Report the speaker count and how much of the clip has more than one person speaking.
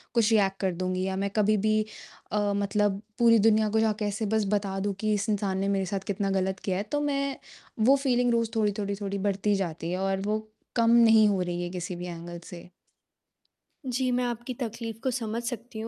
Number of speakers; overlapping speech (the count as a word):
two, no overlap